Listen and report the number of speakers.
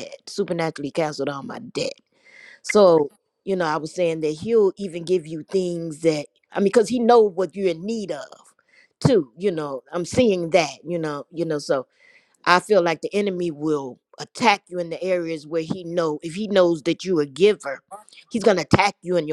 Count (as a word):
one